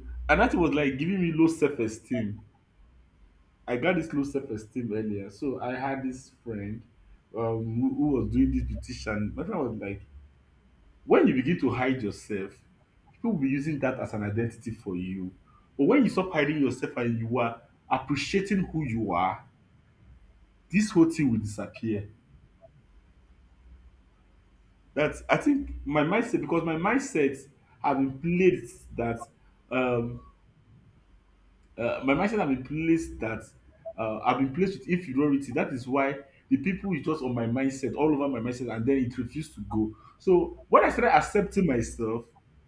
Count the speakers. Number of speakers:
1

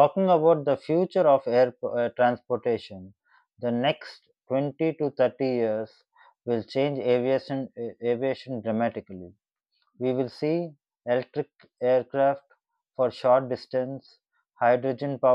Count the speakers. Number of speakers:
1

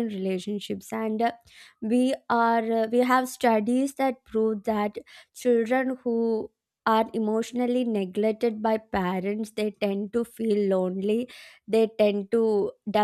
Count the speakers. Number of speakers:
1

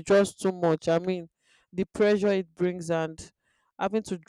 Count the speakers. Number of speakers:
1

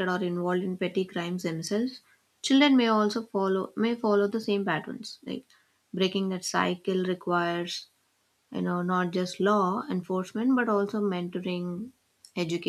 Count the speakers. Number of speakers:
1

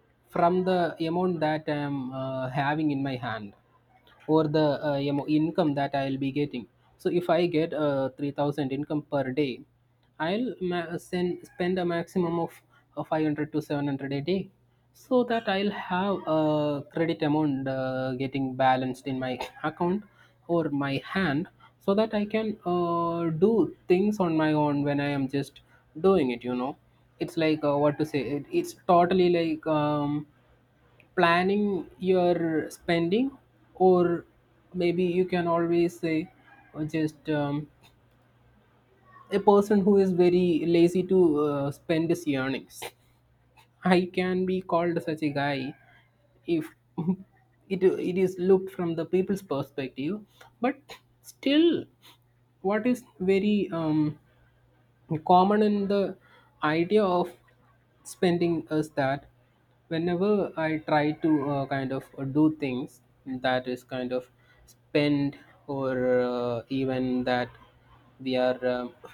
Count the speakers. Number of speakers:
1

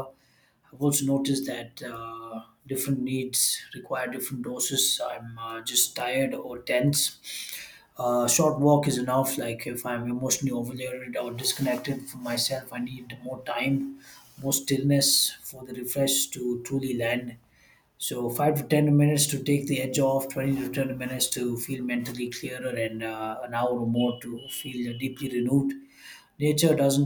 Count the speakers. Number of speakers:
1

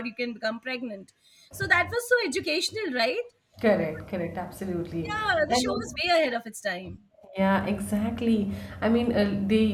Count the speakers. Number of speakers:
2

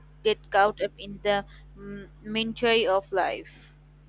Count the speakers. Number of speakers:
1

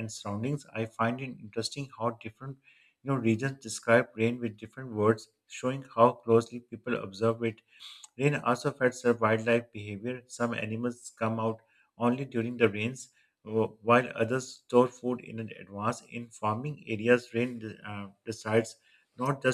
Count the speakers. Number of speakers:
1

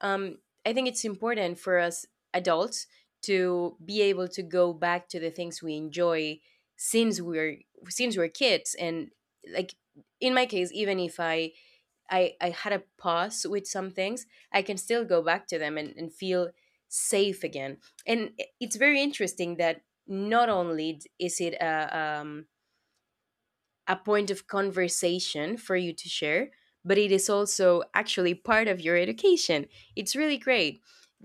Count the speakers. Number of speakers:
1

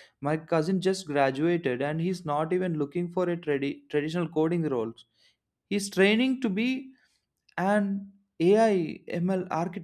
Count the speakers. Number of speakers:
1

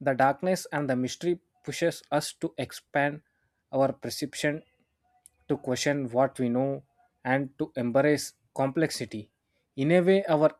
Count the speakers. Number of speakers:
1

